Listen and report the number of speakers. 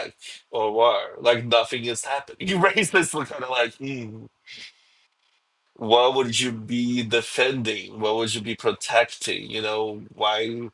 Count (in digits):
1